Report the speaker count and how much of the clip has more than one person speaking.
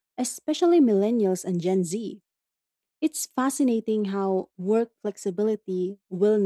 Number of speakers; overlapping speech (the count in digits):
1, no overlap